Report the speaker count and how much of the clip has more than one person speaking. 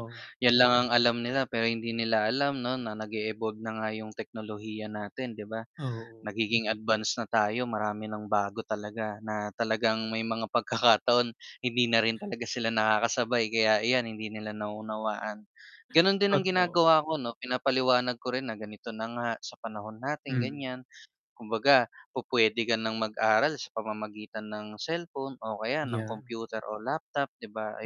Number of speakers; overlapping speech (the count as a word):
two, about 4%